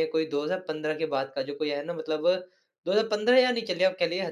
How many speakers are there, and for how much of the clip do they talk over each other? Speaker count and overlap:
1, no overlap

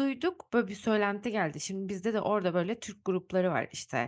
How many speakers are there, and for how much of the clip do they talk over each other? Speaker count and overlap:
1, no overlap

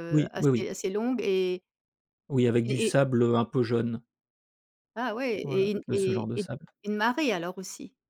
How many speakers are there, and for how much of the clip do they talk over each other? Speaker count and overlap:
2, about 22%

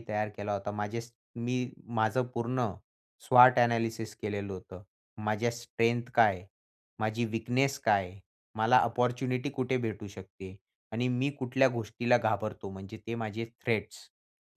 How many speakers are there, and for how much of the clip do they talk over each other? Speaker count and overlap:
1, no overlap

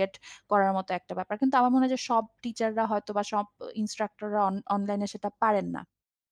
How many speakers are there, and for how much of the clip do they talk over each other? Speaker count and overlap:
1, no overlap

